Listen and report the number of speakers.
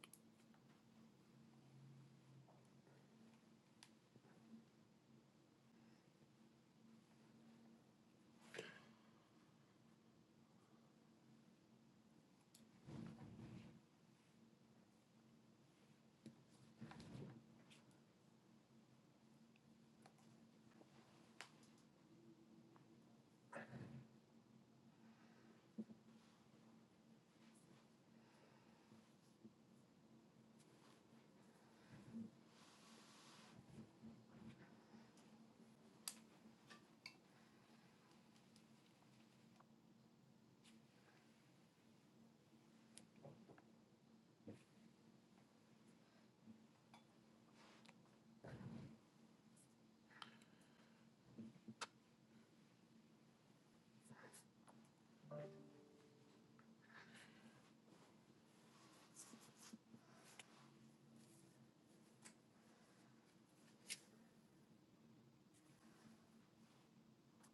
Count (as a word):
zero